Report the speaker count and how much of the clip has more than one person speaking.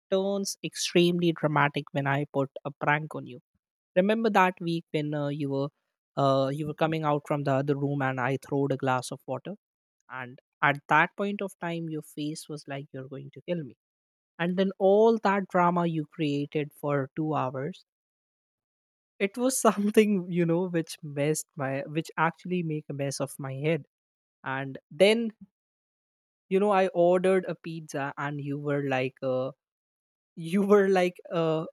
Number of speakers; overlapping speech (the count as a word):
one, no overlap